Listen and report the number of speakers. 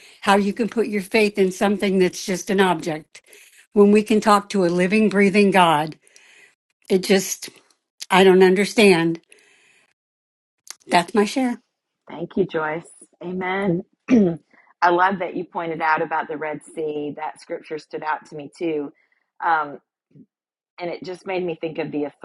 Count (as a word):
two